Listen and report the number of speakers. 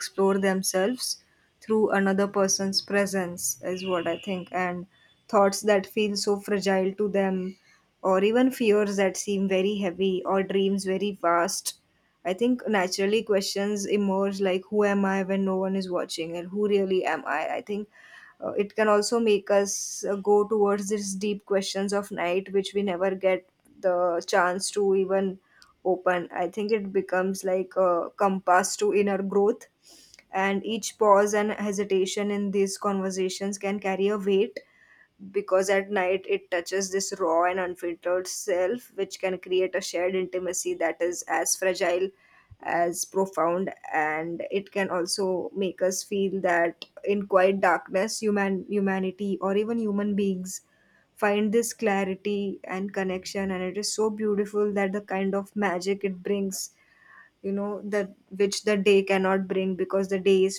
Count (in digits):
1